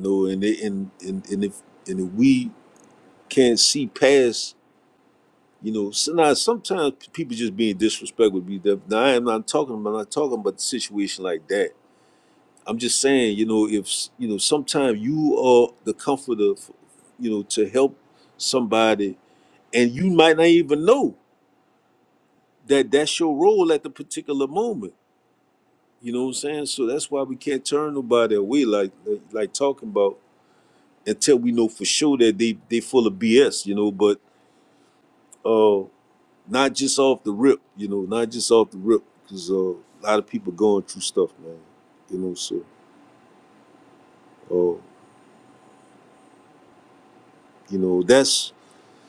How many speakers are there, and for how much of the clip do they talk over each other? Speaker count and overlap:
1, no overlap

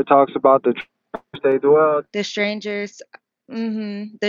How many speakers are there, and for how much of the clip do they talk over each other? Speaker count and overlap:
2, no overlap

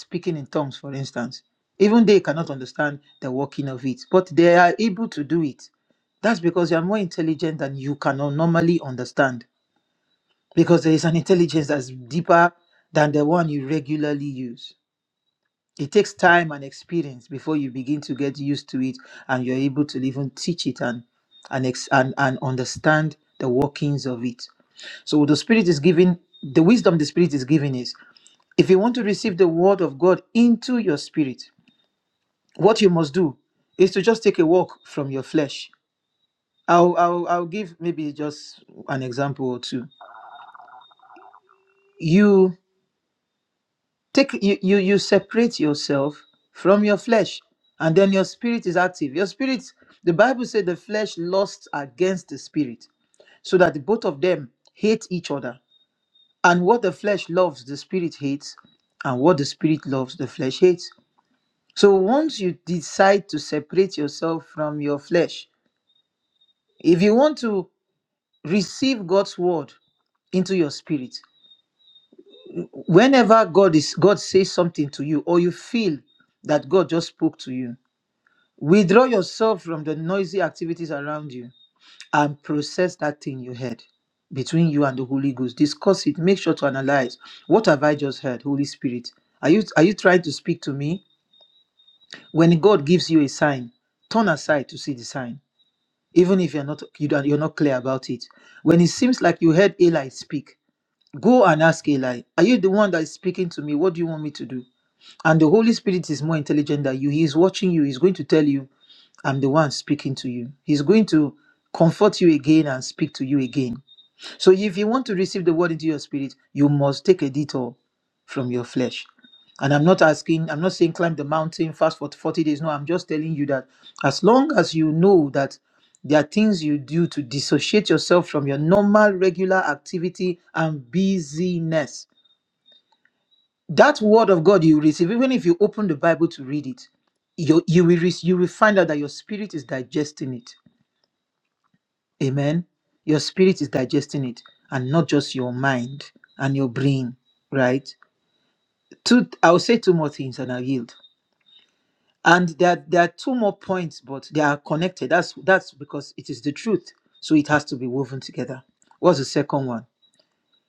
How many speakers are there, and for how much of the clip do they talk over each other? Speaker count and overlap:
1, no overlap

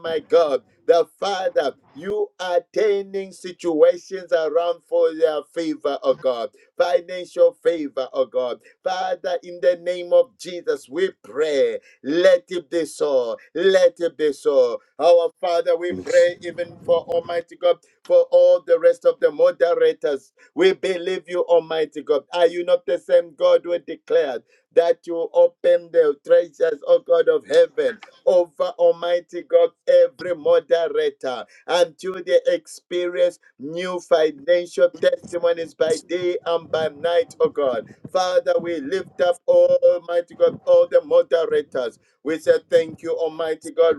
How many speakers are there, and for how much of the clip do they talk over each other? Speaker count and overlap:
1, no overlap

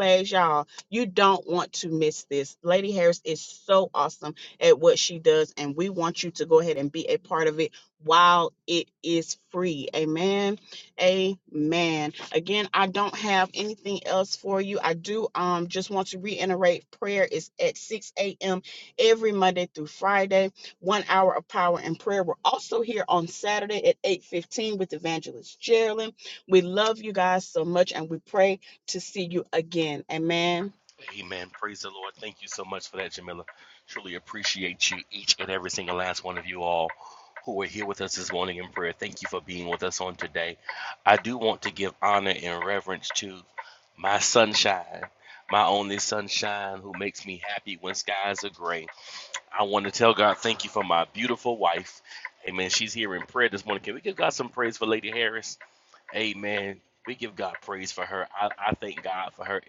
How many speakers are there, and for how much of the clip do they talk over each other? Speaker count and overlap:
2, no overlap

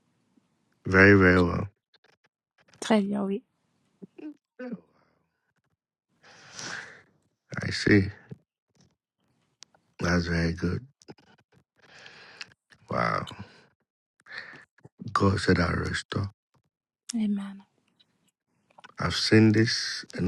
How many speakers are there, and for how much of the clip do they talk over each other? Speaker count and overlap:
2, no overlap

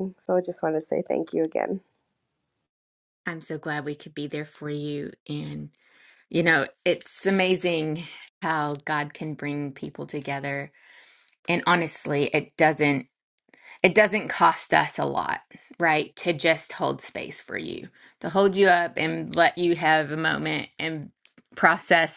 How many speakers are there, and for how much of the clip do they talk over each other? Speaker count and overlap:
2, no overlap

